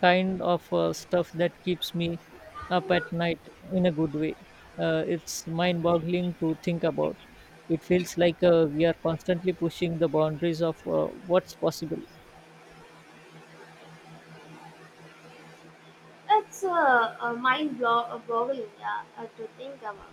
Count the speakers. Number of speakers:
2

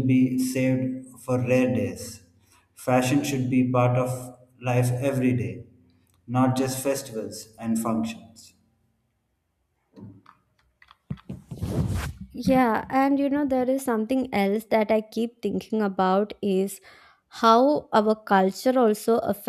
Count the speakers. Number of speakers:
2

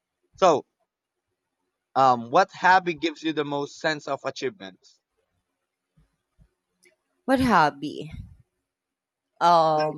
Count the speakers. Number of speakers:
2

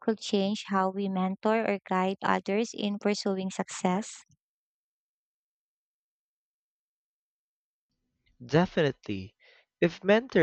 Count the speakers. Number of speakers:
2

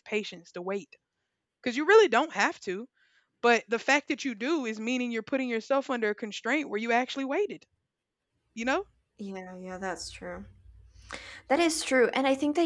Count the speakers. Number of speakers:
2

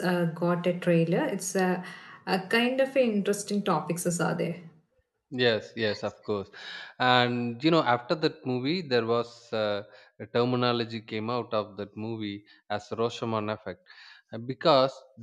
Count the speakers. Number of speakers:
2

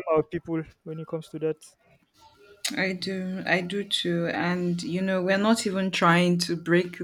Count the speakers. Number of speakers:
2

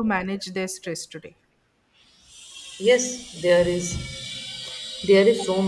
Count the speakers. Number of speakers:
2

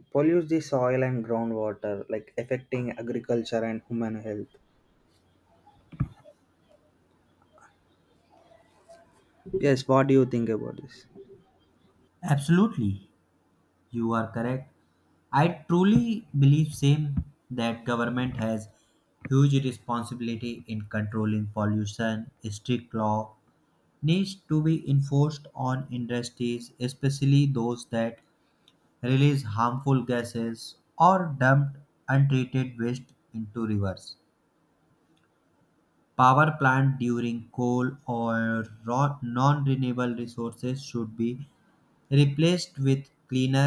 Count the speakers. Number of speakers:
2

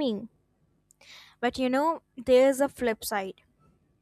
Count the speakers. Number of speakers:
1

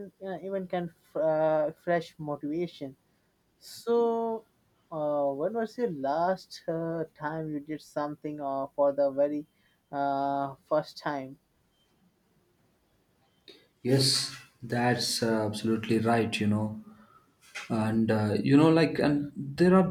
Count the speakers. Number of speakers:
2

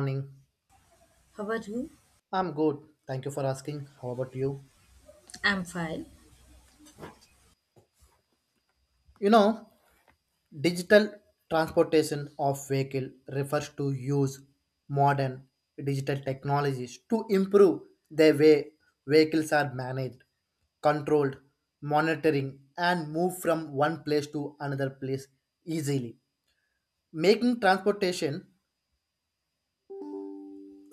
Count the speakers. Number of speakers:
2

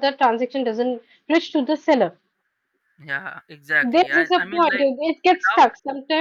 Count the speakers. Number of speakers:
2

